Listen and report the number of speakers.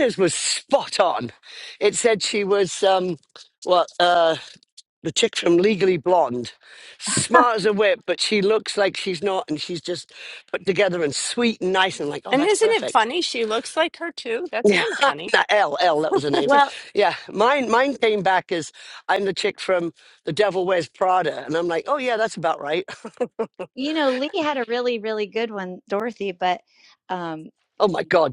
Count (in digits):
3